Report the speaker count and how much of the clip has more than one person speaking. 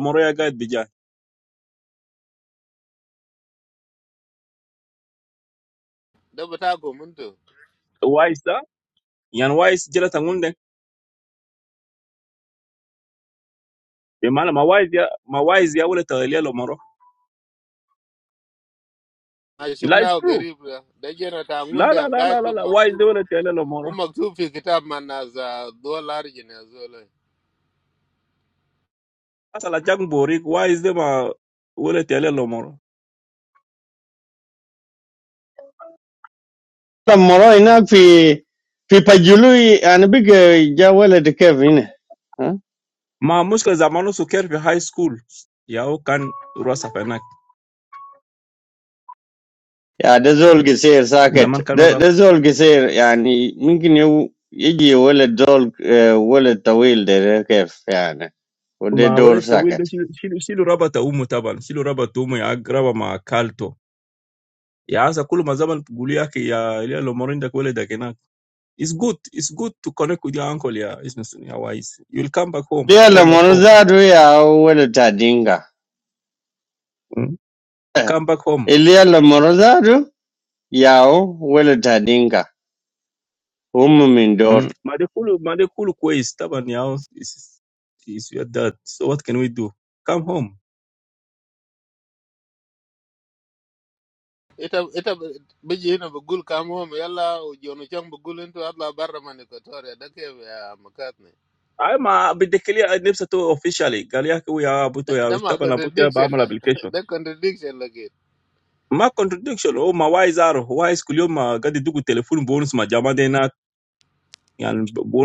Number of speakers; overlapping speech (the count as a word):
three, about 5%